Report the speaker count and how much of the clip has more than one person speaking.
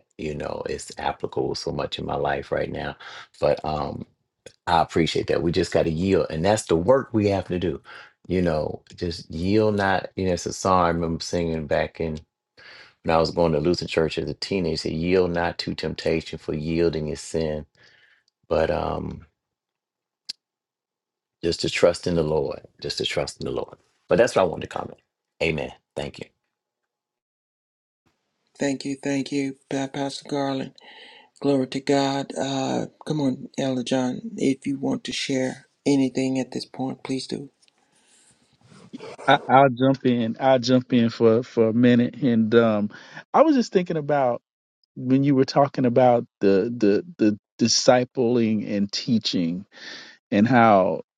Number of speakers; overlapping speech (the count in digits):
3, no overlap